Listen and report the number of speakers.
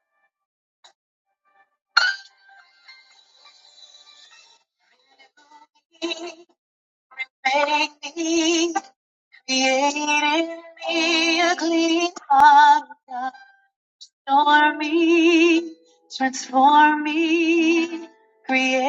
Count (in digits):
1